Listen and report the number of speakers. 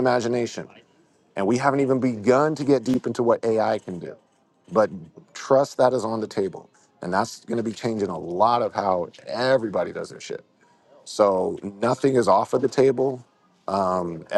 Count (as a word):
one